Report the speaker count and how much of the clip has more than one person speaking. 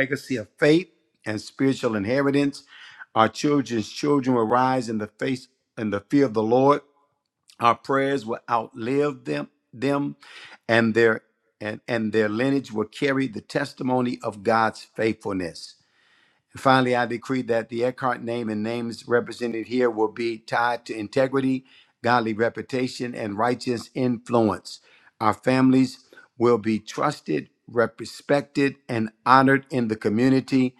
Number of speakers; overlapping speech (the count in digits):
1, no overlap